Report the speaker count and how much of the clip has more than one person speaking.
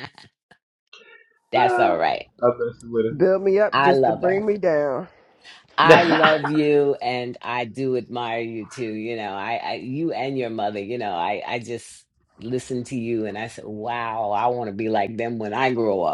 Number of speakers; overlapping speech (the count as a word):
three, about 6%